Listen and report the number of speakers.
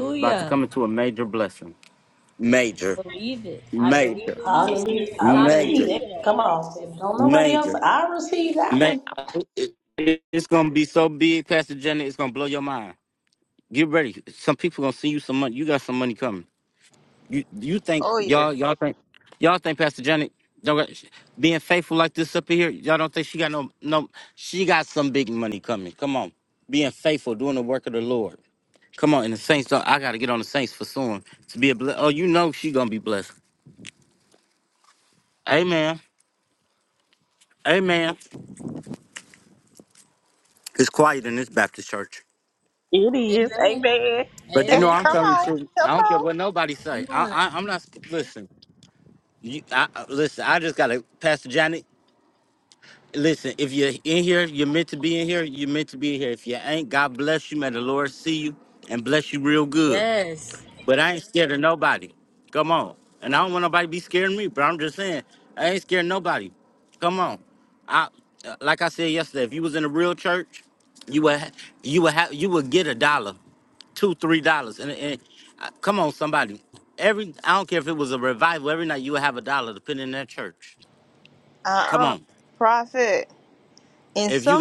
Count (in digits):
4